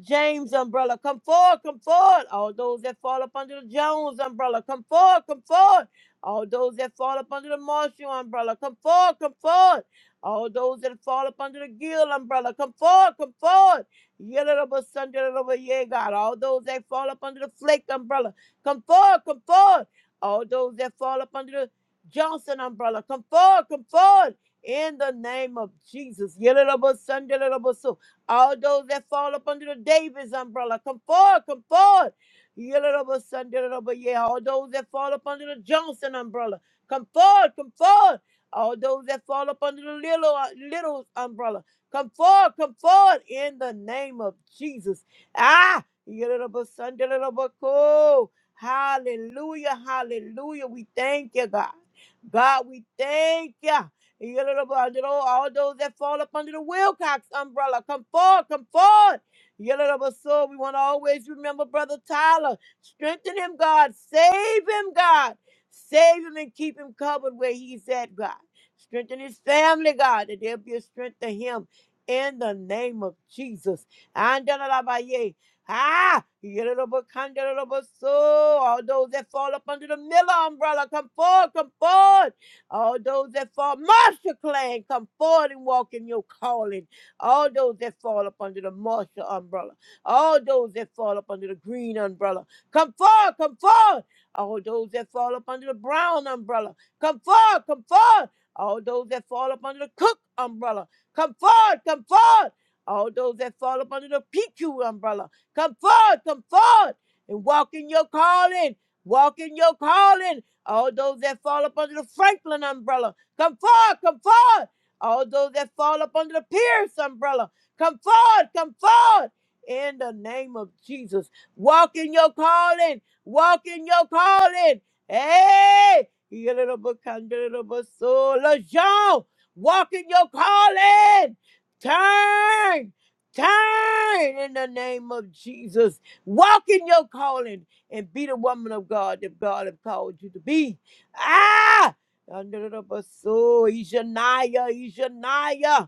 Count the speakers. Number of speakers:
1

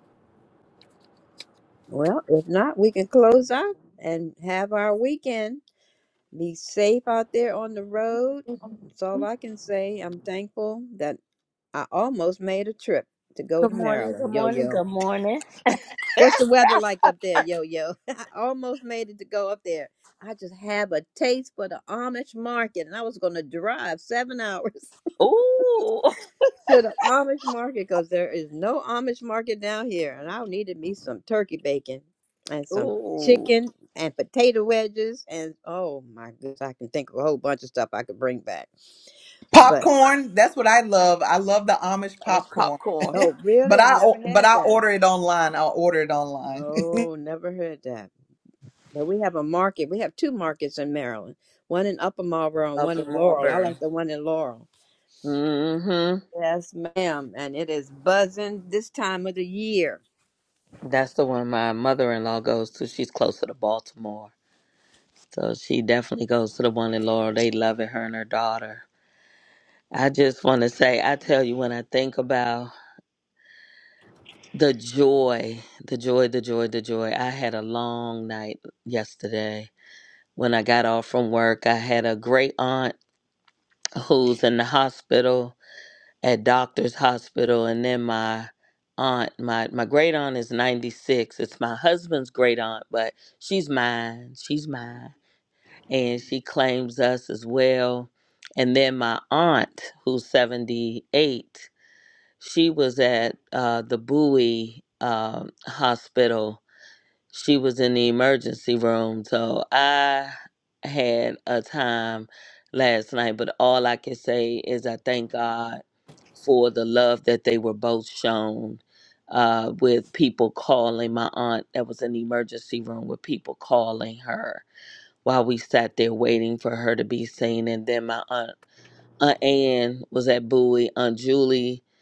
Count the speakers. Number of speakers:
3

